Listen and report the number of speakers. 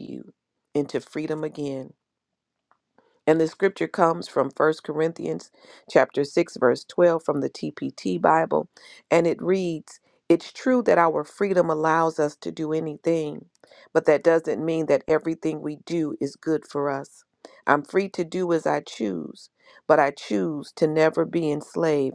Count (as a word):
one